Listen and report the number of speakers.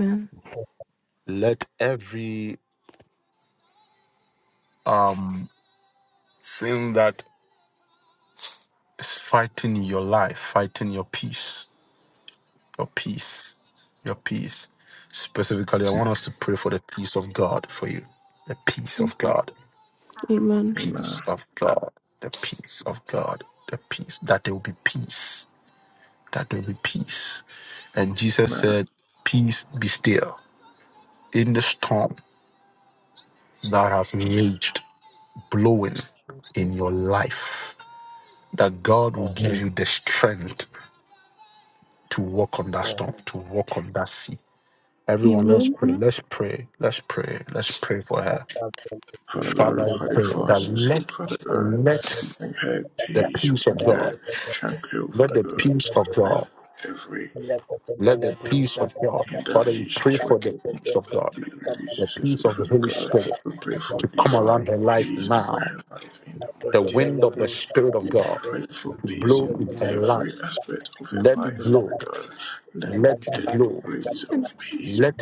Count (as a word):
four